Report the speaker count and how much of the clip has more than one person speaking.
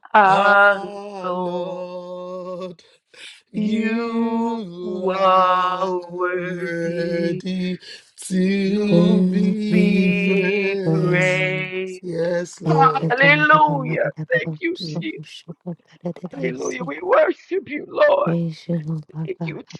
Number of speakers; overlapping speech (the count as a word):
three, about 45%